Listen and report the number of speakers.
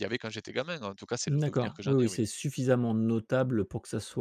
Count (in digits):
2